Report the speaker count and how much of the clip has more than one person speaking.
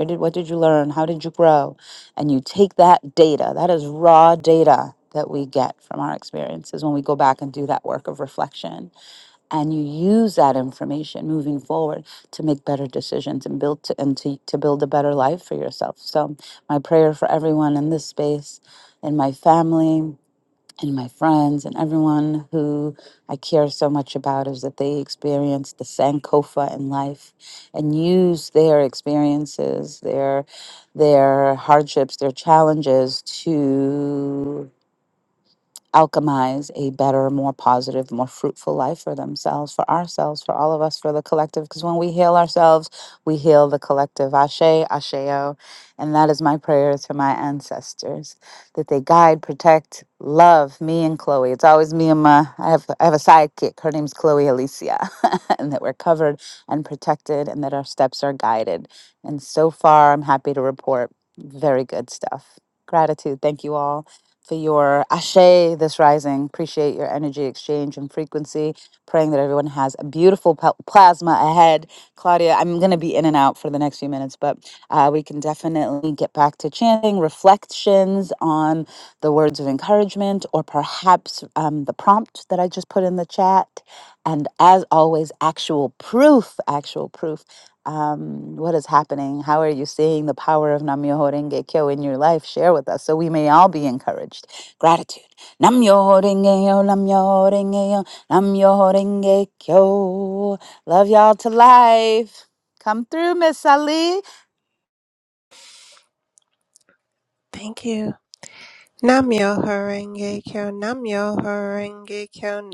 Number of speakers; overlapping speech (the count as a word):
two, no overlap